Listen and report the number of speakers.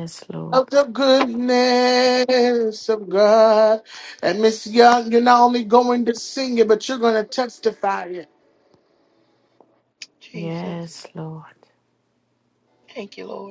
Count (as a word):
three